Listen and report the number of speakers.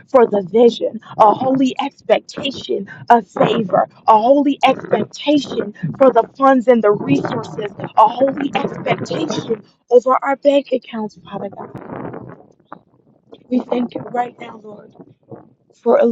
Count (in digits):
1